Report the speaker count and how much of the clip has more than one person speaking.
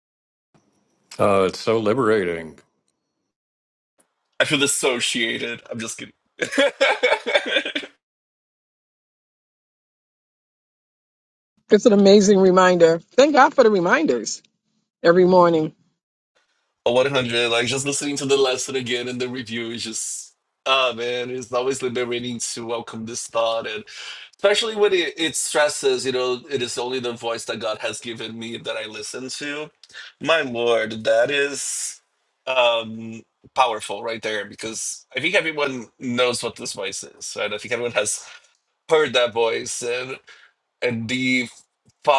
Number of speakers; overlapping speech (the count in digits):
3, no overlap